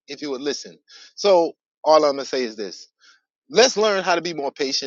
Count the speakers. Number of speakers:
1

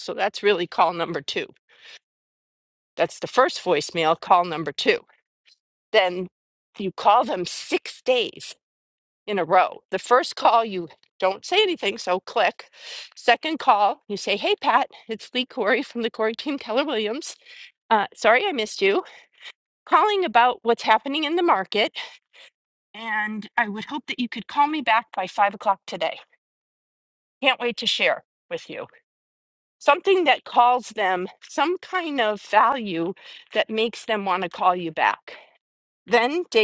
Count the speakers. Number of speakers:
1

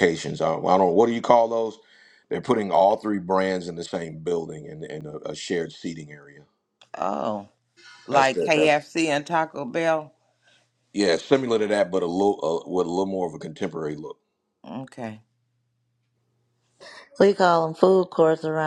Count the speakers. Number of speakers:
3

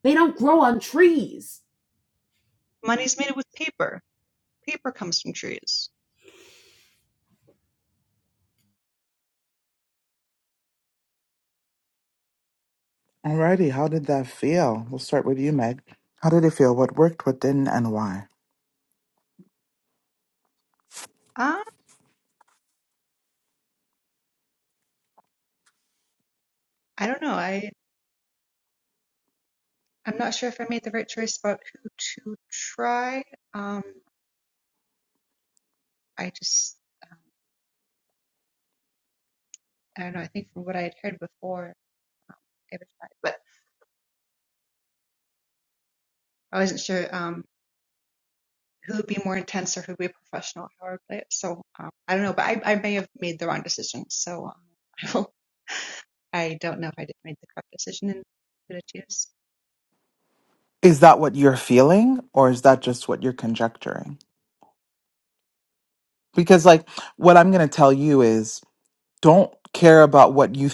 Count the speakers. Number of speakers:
3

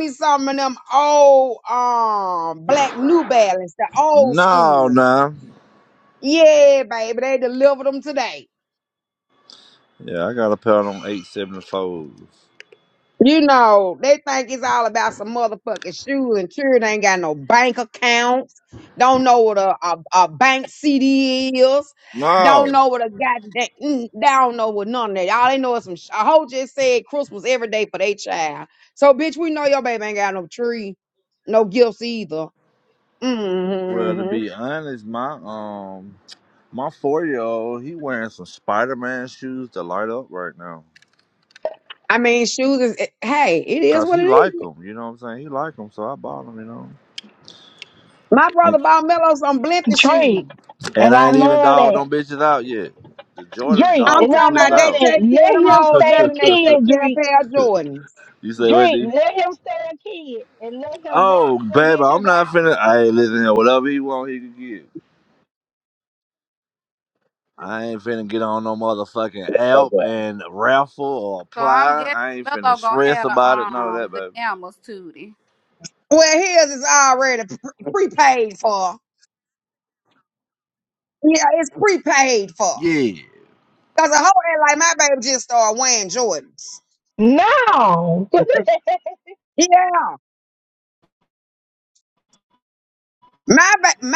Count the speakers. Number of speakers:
4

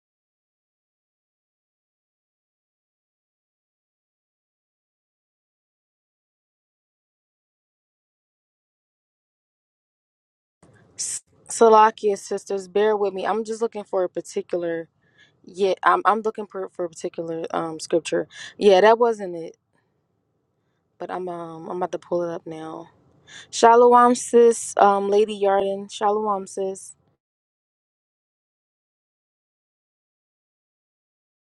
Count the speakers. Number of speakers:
1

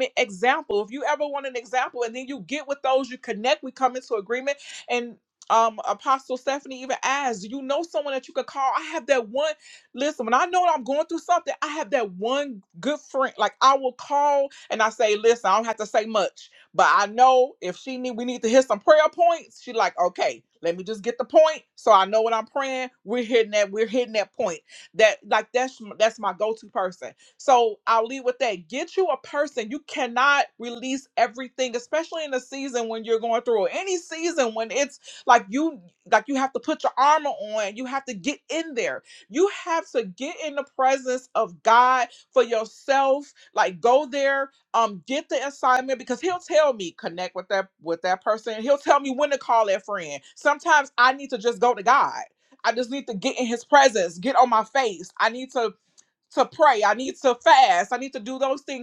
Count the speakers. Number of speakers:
1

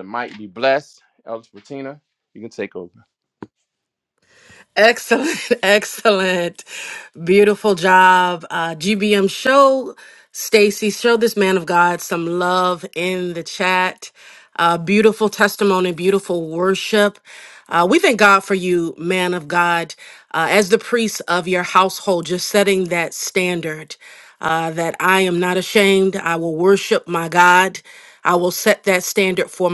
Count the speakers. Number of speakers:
2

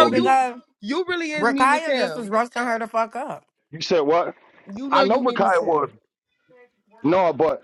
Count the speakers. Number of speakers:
3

